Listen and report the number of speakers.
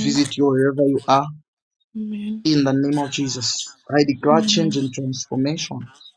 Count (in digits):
2